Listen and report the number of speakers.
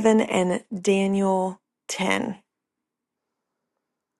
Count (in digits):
1